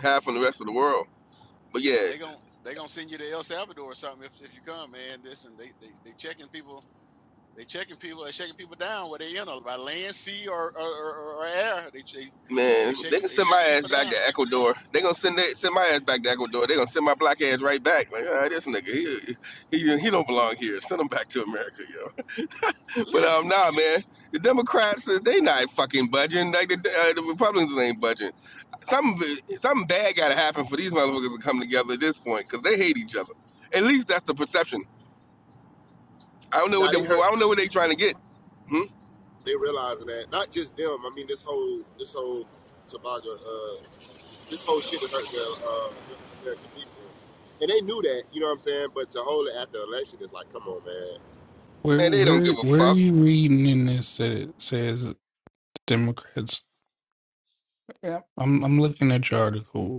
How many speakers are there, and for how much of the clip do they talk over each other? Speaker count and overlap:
4, about 6%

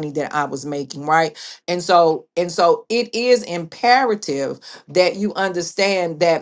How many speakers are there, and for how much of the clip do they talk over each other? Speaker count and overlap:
1, no overlap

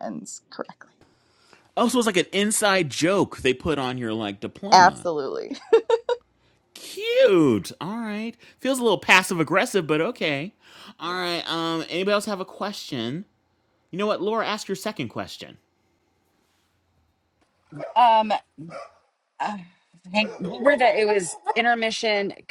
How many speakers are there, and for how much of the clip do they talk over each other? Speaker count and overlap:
3, about 1%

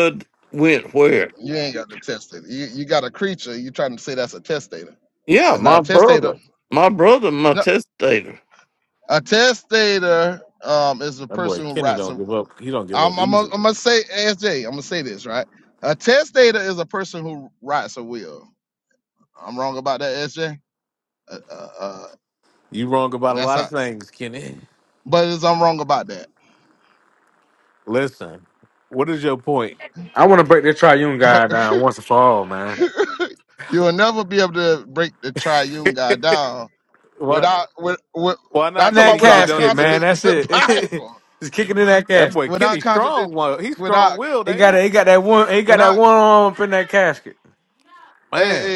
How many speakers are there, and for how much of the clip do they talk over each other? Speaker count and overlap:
4, about 15%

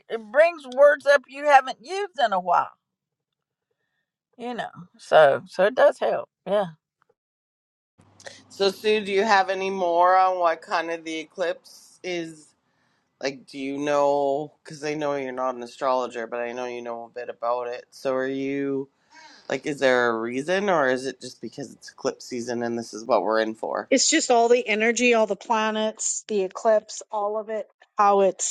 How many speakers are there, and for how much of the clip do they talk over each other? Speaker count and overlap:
3, no overlap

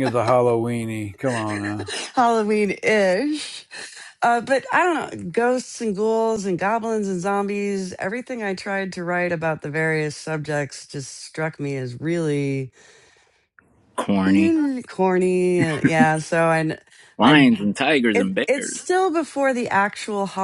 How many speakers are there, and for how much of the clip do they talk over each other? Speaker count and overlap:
3, about 6%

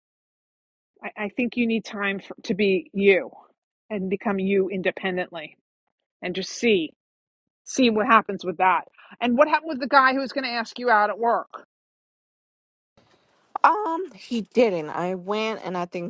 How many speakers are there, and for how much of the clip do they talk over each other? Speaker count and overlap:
2, no overlap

